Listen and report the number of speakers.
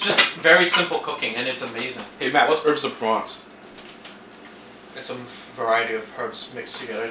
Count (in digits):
2